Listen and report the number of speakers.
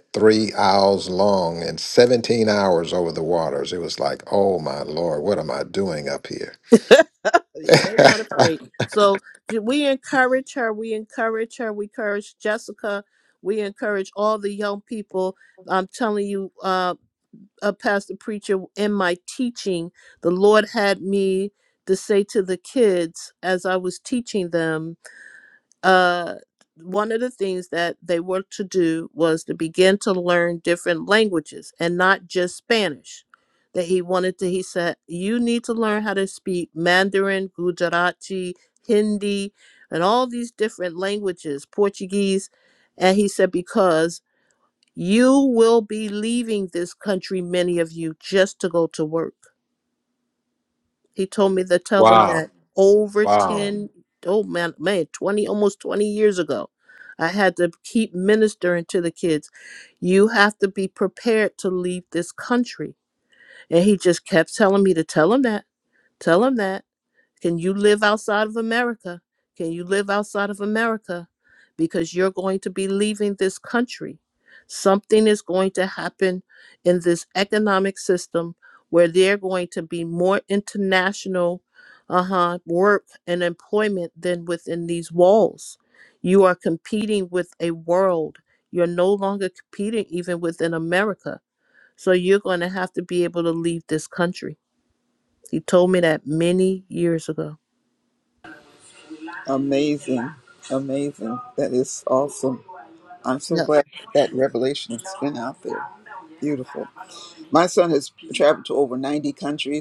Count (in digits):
3